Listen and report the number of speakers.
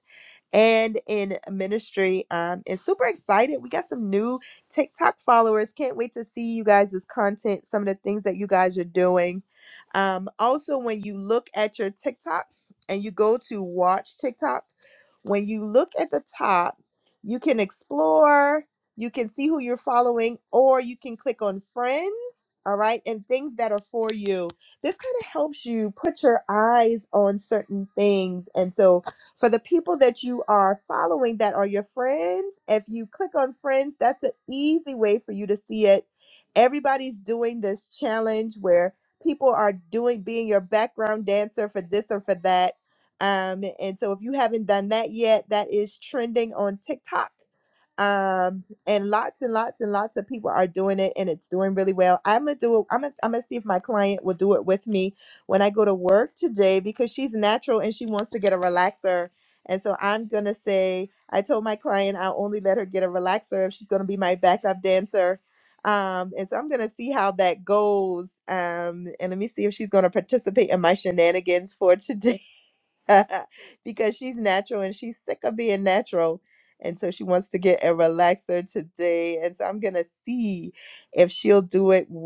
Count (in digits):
1